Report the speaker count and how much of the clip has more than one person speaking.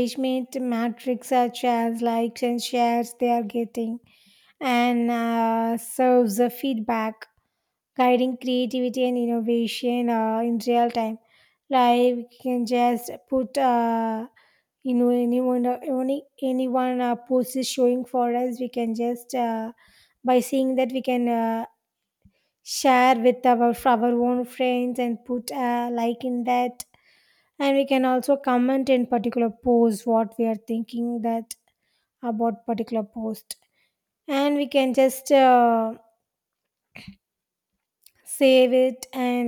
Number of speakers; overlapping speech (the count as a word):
one, no overlap